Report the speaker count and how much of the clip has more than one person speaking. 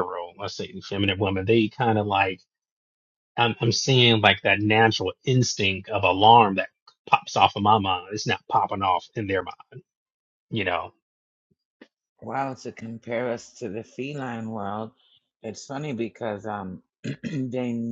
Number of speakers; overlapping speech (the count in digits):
2, no overlap